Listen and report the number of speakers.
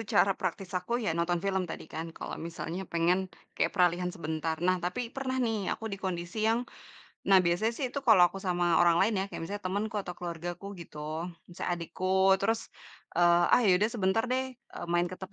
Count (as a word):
one